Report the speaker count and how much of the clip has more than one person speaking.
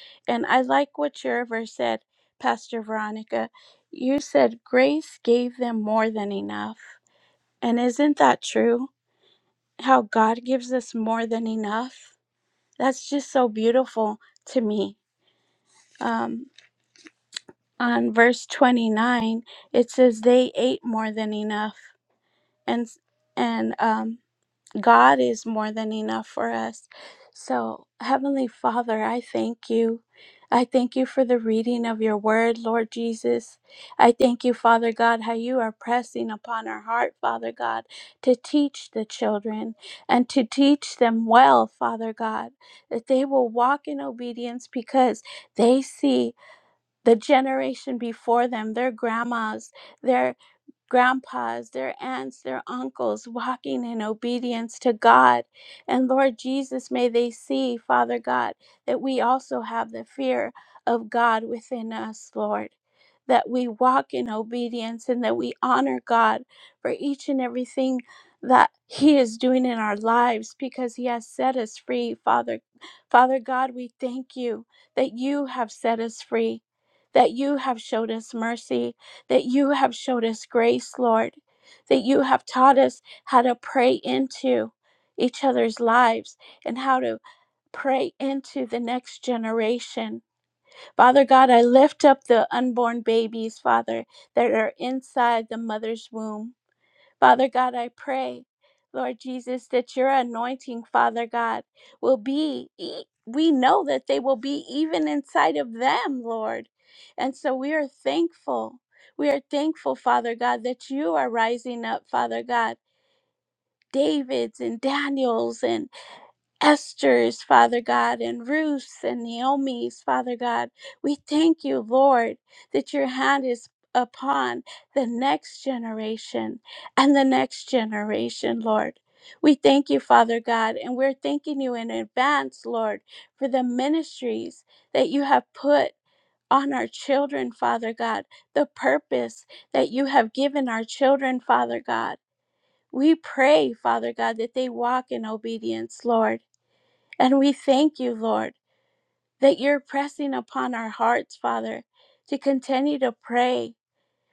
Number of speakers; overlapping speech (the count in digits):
1, no overlap